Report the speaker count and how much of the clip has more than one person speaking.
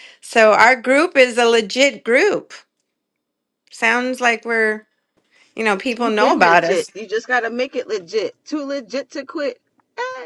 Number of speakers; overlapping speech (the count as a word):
two, about 8%